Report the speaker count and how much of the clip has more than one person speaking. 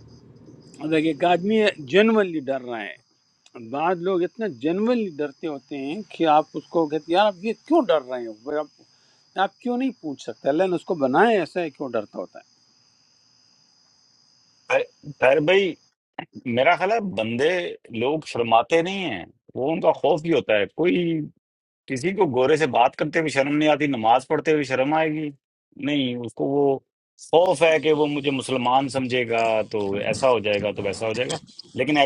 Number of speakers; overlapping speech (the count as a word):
two, no overlap